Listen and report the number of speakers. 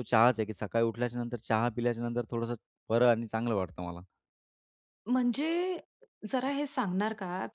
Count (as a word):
two